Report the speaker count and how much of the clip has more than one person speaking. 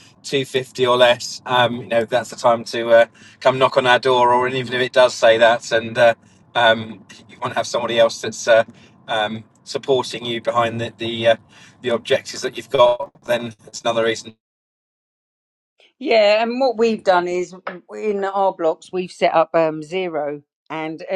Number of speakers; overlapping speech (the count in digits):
2, no overlap